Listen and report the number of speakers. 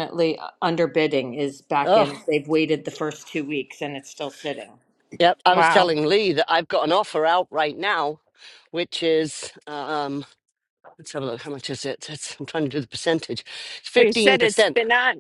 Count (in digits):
3